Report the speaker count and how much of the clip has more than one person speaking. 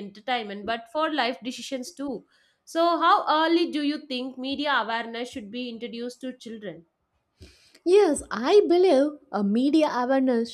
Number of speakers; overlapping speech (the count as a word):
two, no overlap